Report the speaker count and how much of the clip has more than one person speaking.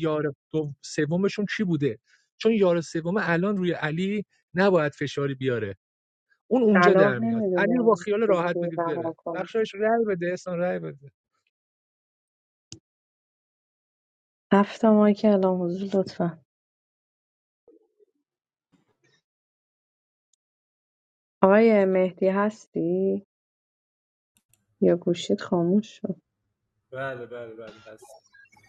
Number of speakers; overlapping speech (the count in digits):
3, about 10%